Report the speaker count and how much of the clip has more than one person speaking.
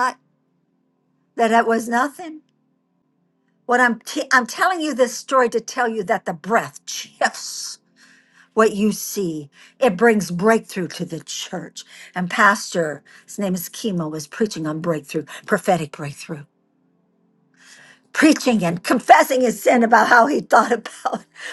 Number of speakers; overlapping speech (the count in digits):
1, no overlap